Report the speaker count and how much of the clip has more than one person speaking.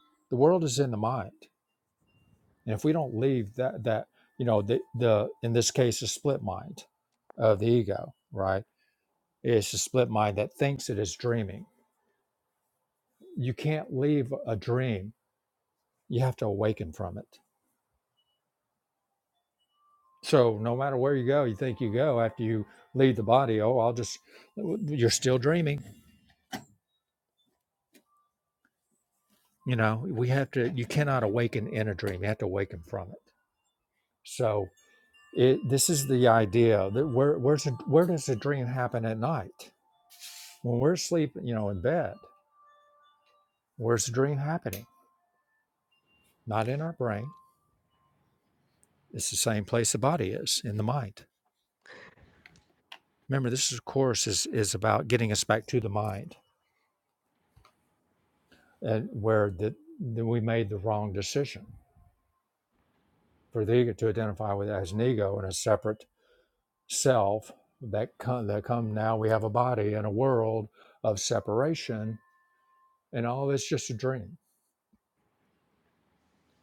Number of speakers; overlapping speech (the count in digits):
1, no overlap